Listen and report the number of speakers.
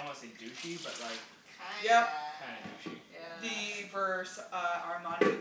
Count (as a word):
three